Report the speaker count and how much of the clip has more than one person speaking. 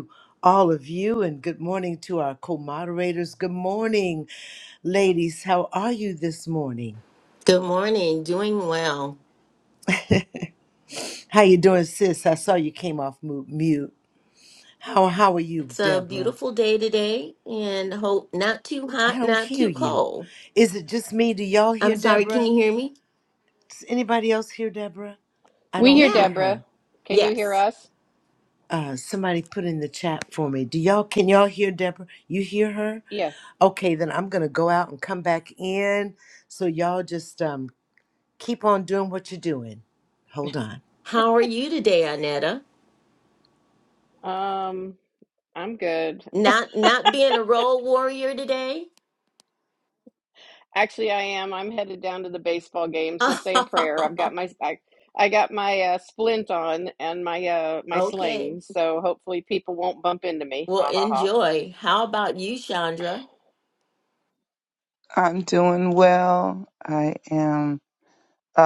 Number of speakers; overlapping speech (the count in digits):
4, about 7%